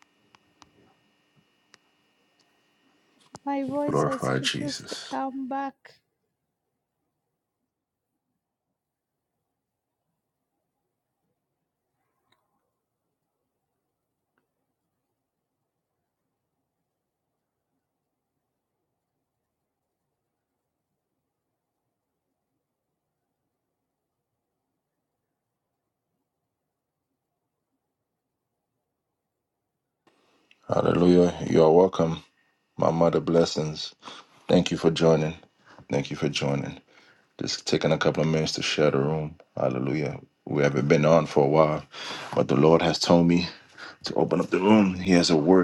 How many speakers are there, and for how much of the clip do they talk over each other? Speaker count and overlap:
2, about 2%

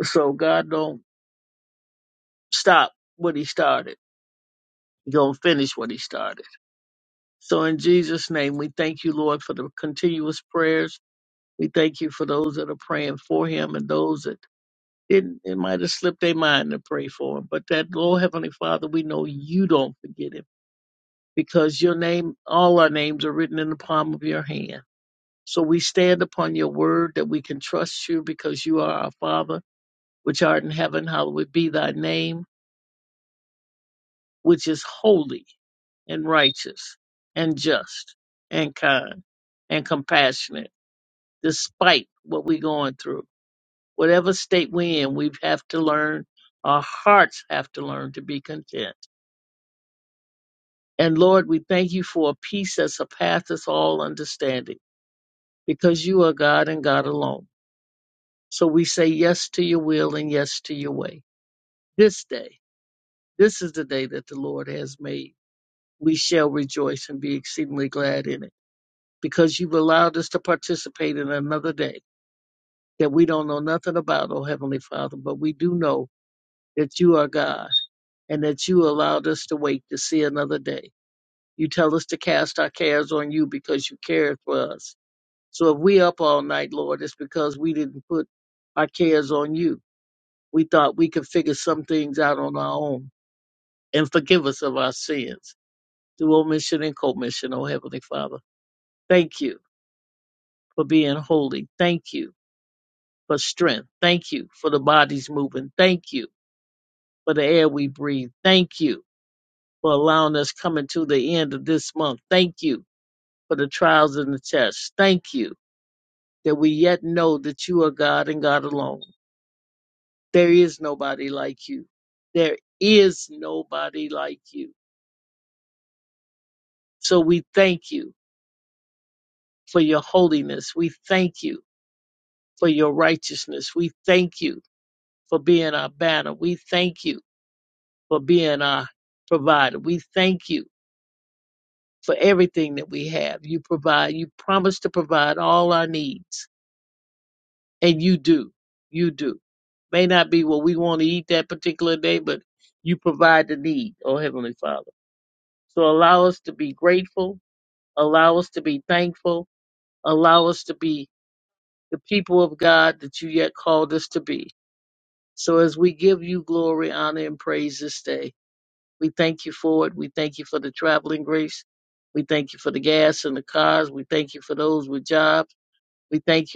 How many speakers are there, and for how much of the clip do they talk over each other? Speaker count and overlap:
1, no overlap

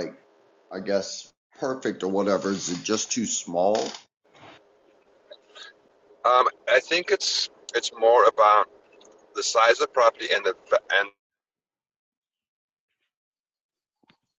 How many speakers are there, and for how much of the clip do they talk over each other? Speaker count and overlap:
2, no overlap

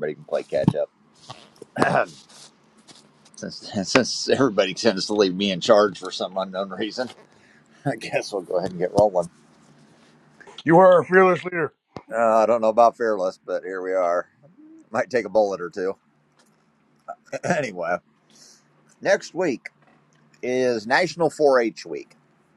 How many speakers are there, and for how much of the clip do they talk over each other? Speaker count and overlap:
2, no overlap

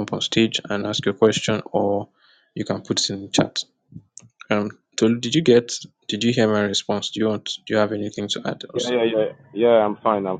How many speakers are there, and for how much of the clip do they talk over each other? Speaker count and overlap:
2, about 2%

